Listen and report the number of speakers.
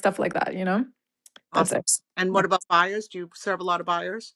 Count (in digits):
2